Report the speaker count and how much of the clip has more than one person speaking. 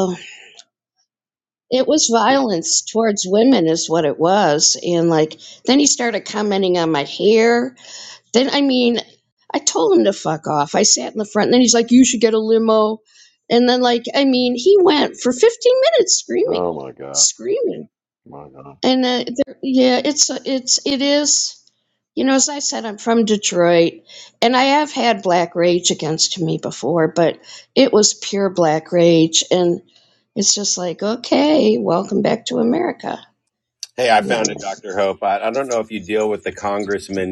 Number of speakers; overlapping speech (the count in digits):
3, about 2%